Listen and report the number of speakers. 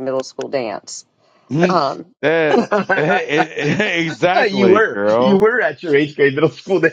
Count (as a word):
three